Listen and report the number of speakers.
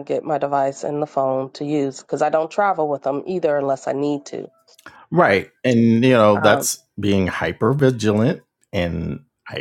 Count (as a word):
two